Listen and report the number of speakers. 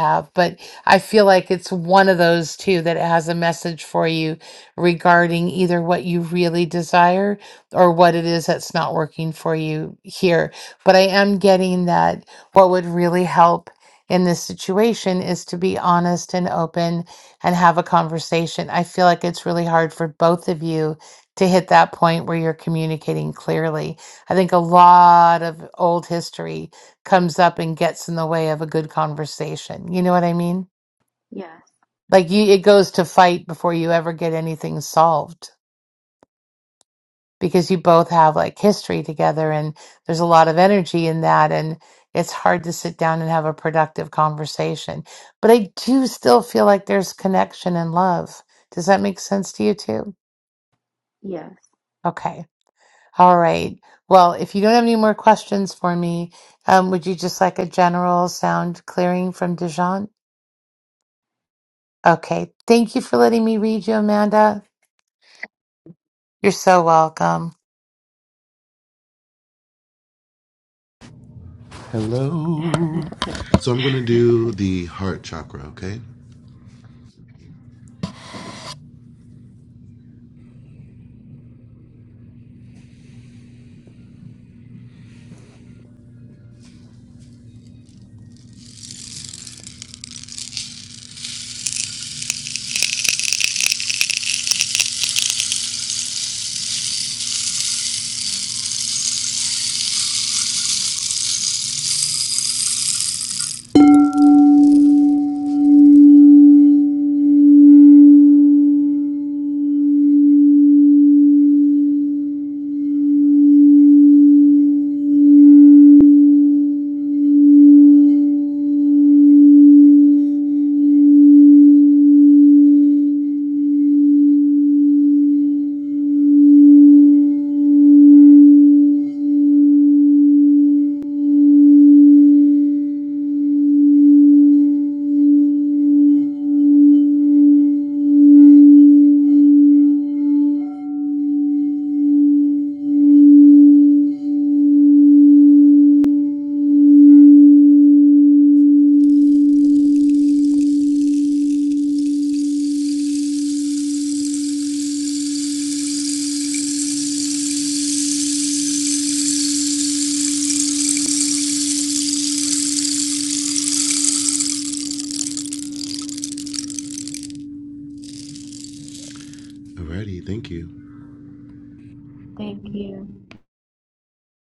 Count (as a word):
three